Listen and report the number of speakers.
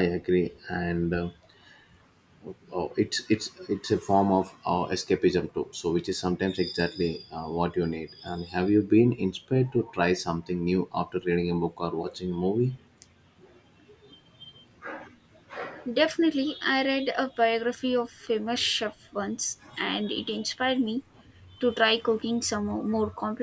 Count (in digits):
2